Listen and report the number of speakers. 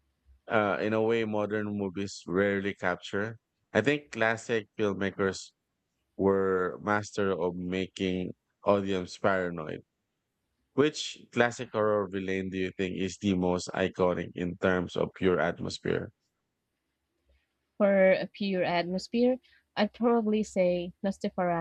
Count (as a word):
two